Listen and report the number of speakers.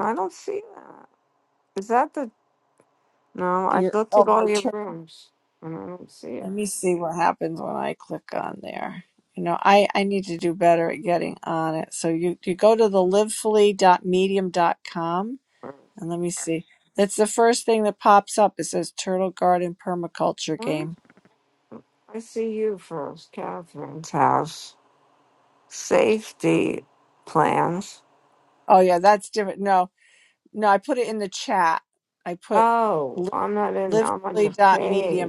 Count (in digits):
2